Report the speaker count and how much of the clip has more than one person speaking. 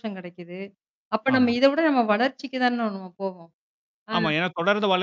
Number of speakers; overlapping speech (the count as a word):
two, about 7%